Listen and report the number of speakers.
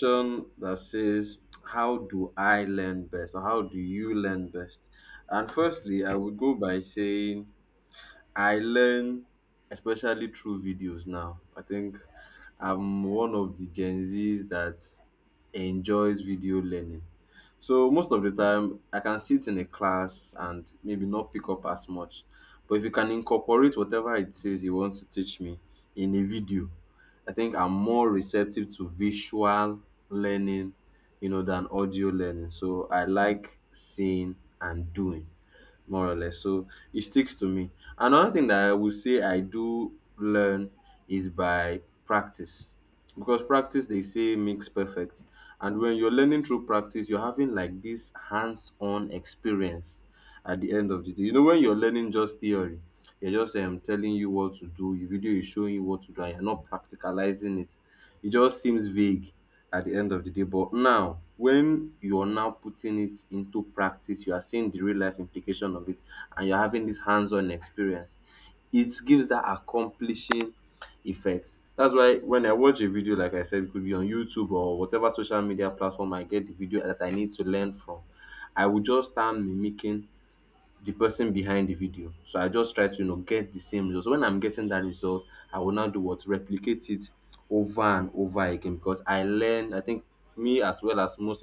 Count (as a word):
one